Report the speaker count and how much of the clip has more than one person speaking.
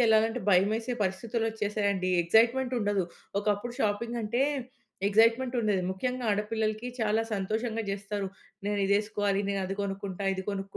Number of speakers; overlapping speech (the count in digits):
1, no overlap